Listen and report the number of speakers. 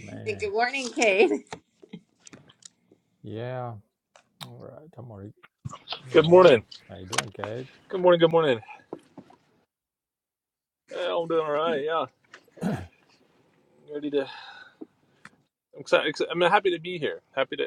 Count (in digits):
3